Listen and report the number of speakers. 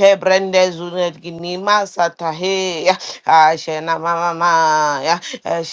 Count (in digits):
1